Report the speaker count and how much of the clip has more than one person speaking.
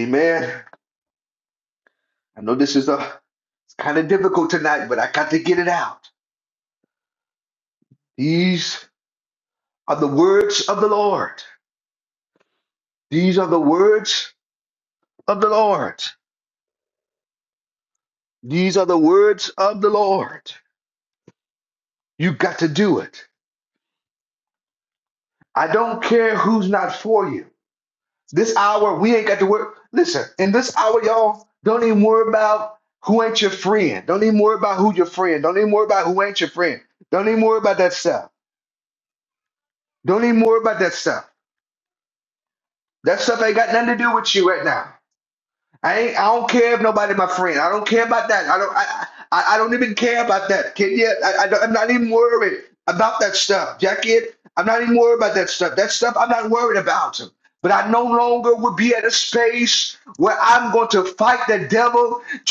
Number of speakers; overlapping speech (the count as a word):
one, no overlap